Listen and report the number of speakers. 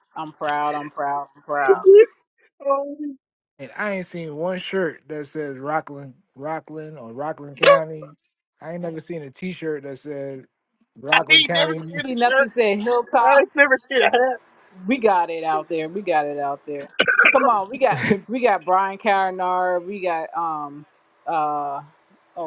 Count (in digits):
3